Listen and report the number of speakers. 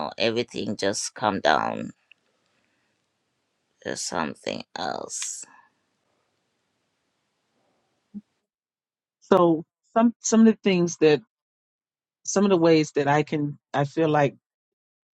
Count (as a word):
two